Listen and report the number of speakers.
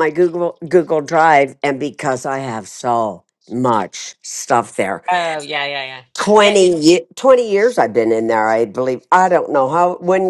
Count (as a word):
two